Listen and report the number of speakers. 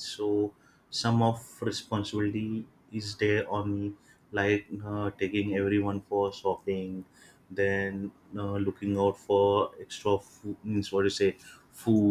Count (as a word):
one